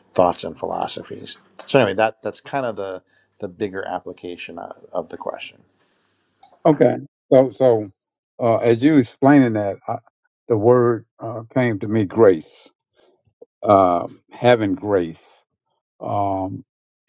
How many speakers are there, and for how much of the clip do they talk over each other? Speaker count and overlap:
2, no overlap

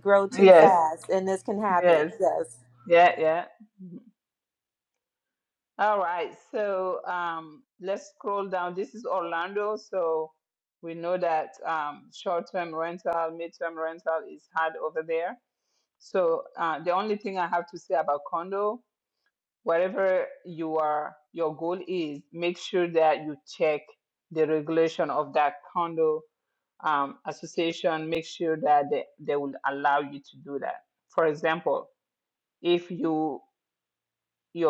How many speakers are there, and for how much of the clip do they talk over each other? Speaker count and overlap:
2, about 3%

